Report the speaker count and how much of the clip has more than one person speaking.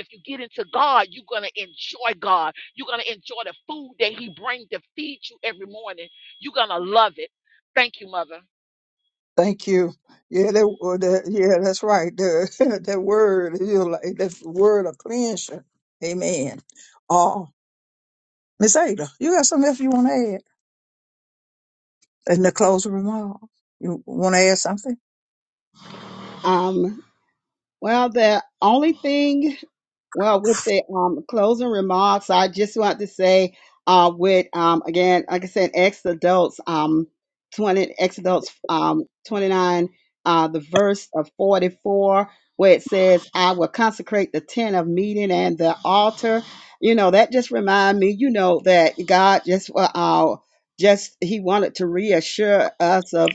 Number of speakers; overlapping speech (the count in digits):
3, no overlap